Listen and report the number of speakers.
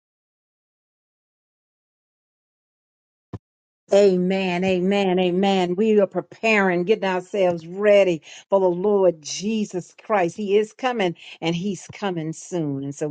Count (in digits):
1